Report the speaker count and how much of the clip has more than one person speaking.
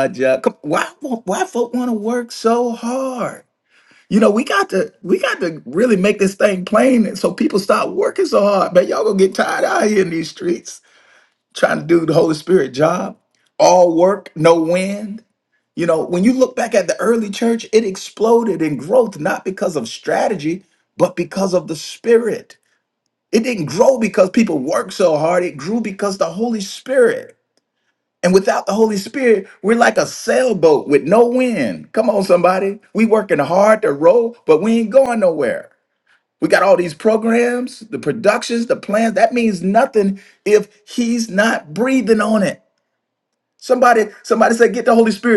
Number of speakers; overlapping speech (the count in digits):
1, no overlap